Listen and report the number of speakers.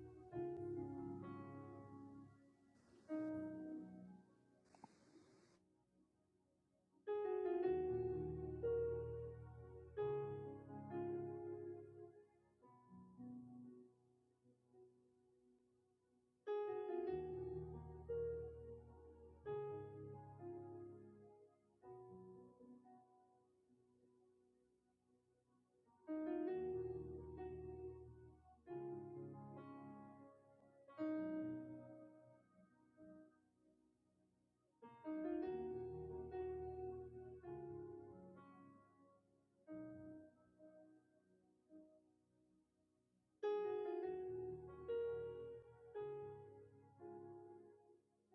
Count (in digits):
0